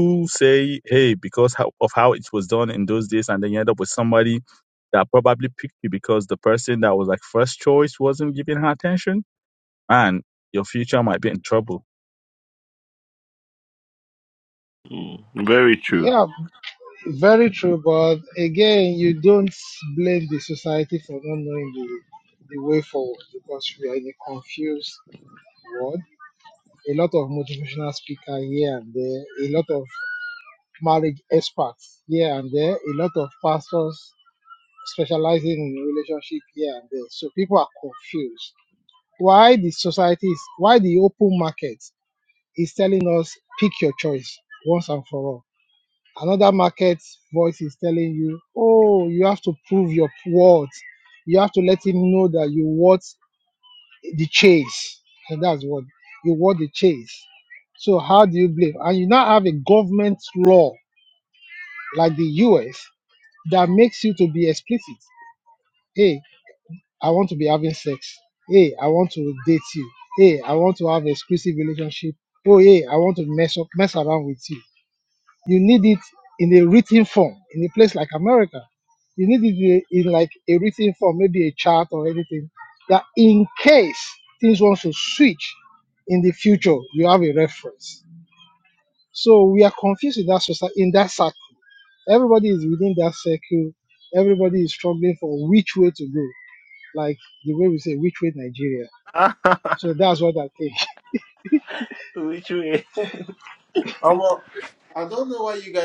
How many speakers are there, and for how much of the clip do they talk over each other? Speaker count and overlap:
4, under 1%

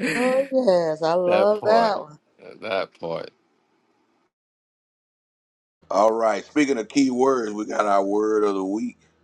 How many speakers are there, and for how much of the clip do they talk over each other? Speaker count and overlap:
3, about 7%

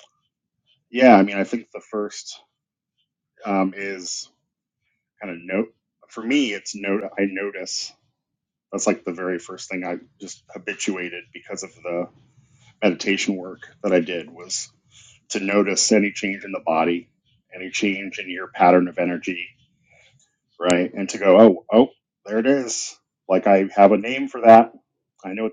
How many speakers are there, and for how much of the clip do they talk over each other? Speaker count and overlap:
1, no overlap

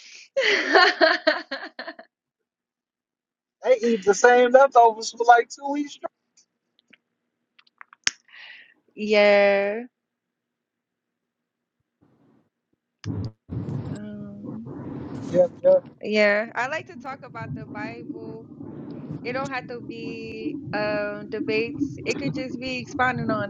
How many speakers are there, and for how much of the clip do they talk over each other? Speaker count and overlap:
2, no overlap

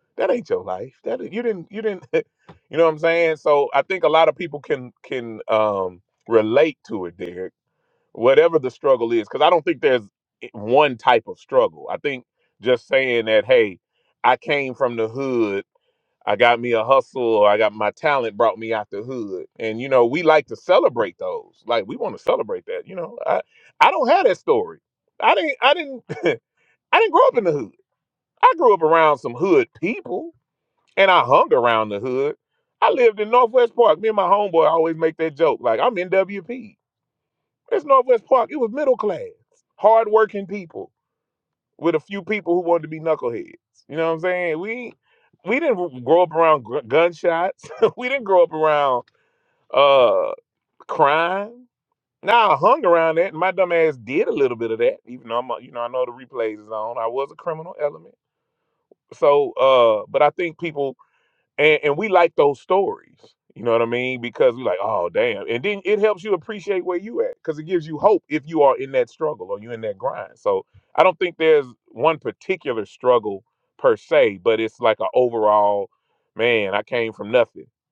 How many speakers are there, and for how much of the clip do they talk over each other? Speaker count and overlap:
1, no overlap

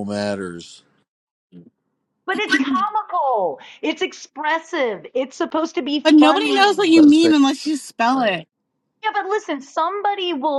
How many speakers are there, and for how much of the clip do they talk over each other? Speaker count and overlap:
3, about 14%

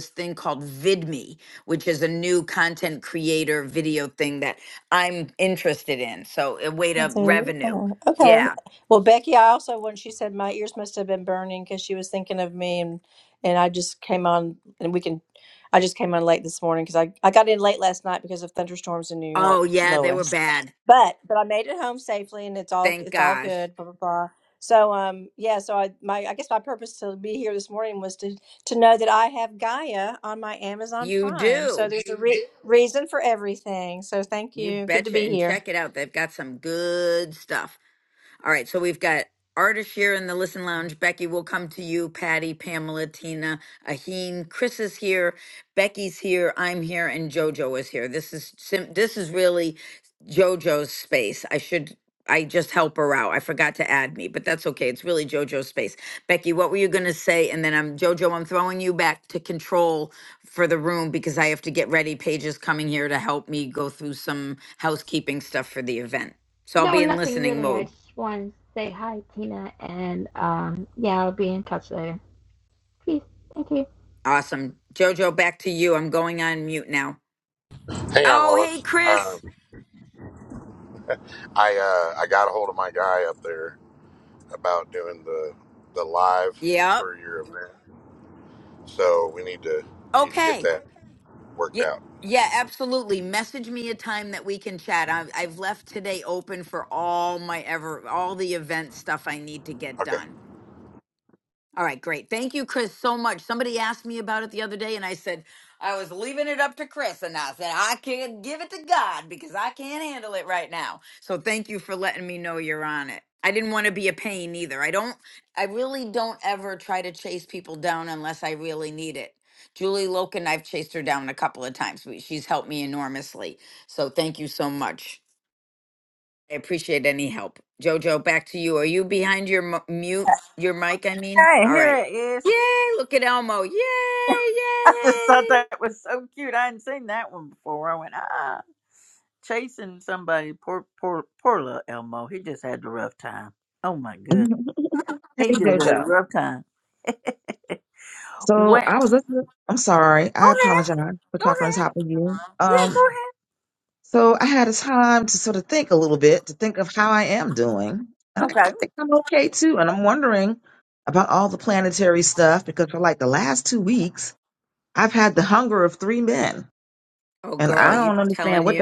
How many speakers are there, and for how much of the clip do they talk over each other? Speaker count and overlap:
6, about 8%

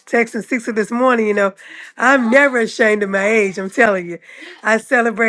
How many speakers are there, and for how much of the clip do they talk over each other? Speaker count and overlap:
1, no overlap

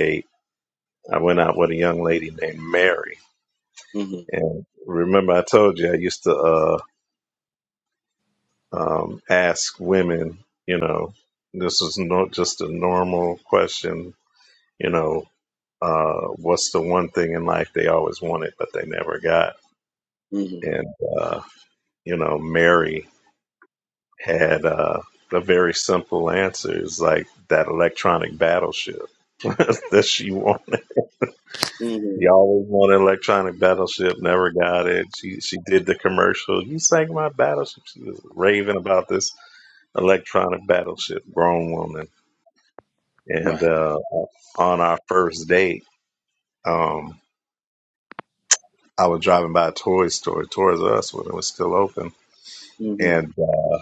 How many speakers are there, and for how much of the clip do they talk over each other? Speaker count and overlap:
2, about 1%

